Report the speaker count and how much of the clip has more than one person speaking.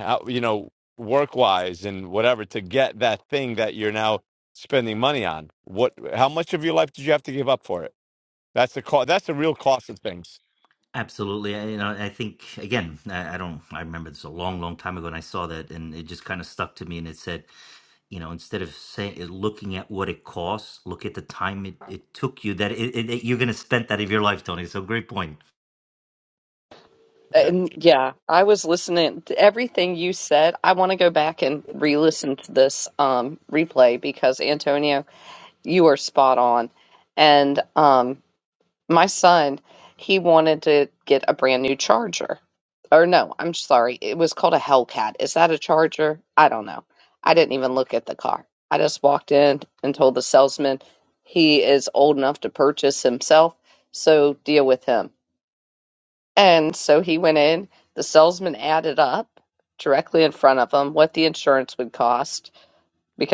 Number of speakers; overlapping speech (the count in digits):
3, under 1%